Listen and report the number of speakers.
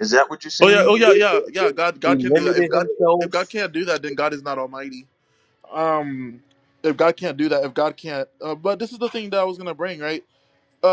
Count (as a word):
two